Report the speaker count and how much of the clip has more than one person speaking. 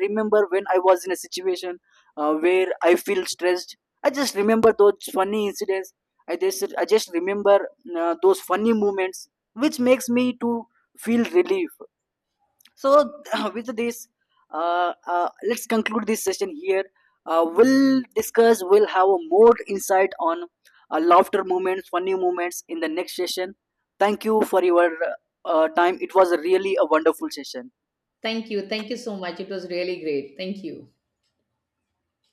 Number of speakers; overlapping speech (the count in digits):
2, no overlap